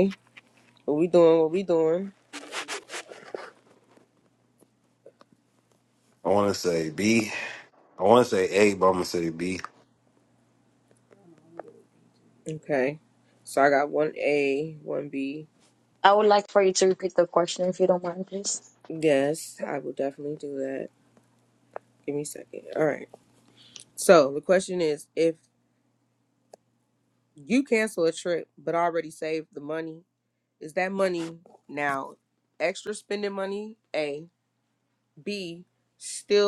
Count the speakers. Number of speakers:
three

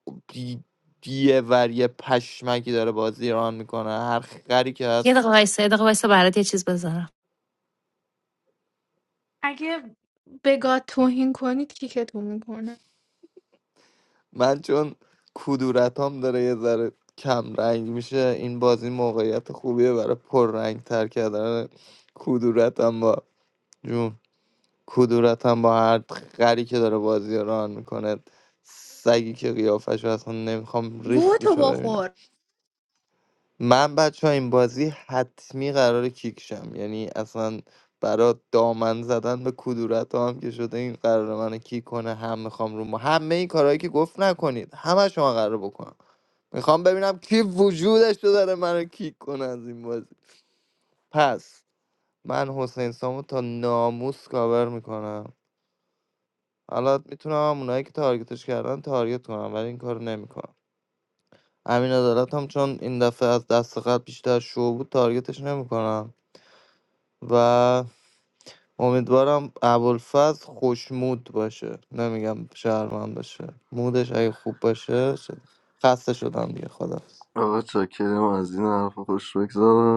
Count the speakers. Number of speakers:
four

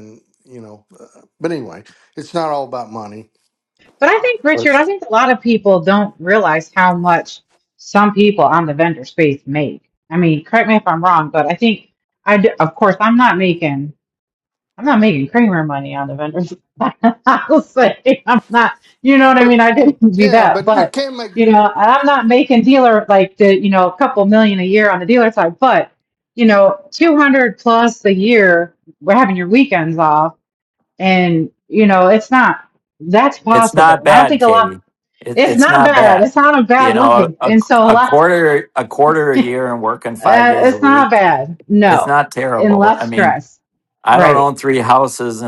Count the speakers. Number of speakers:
three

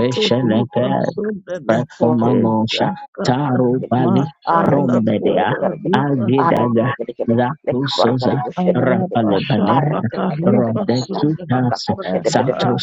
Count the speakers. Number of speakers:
three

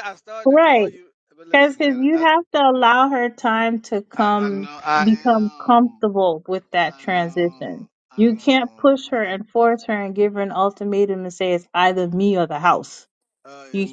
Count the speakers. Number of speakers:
two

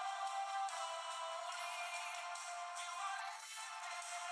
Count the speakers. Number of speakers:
zero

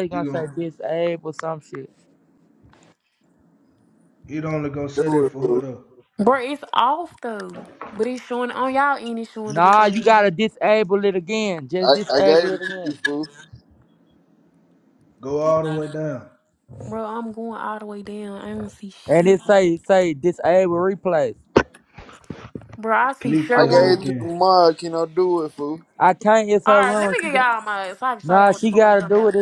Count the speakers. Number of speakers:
four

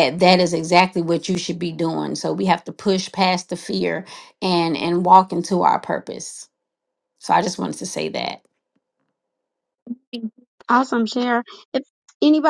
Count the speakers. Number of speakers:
two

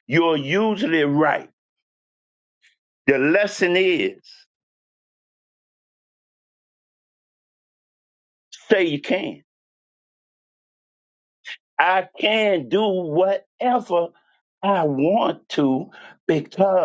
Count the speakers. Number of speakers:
one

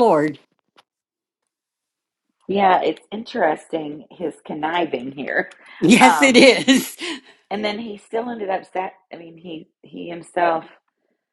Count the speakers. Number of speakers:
two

